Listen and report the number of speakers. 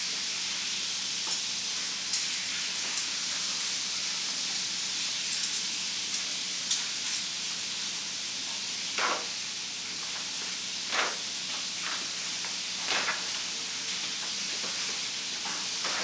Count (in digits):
0